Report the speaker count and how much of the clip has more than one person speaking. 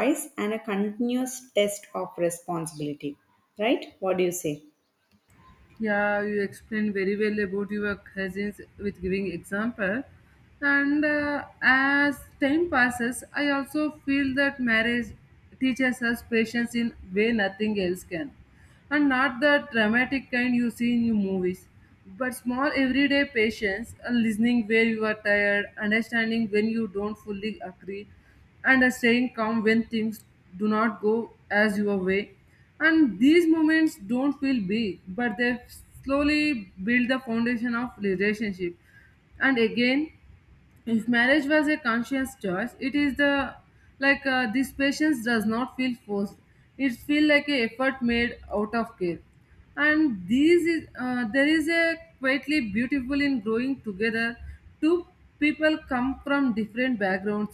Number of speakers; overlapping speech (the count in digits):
2, no overlap